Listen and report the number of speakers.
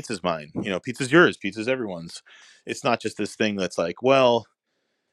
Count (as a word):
one